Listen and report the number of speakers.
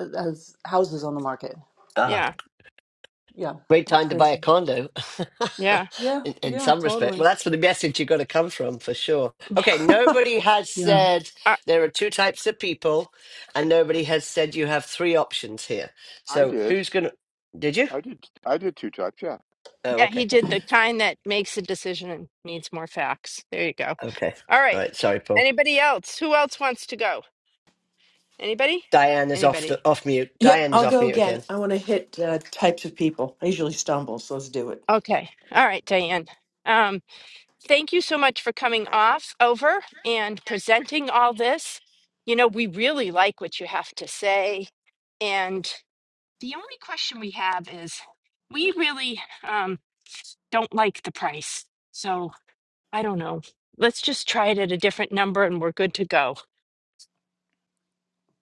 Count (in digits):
5